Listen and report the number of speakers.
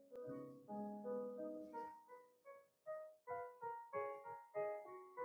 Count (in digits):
0